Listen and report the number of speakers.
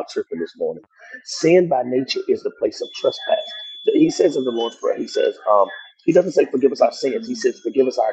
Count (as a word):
one